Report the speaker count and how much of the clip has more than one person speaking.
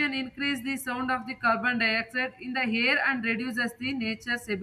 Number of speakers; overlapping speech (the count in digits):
1, no overlap